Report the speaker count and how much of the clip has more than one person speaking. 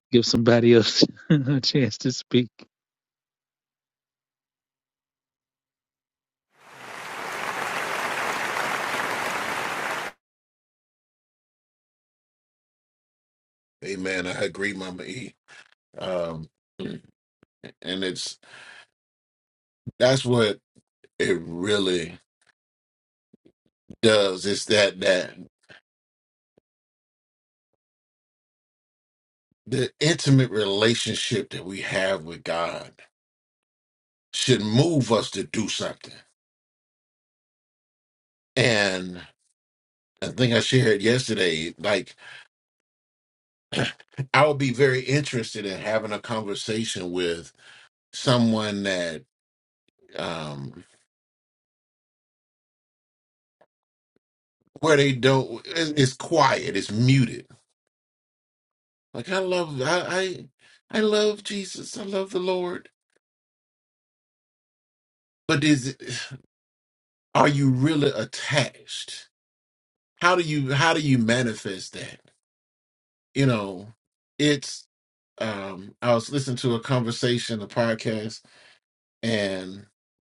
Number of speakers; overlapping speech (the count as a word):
two, no overlap